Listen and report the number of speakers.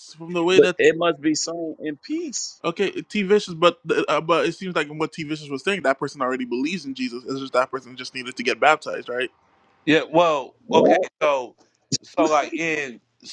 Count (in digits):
3